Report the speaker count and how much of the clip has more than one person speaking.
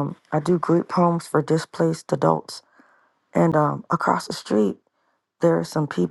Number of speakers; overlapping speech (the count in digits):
1, no overlap